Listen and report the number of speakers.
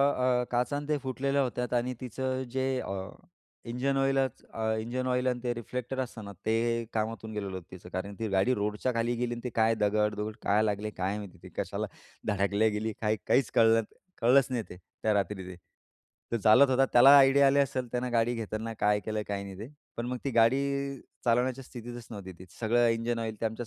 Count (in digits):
1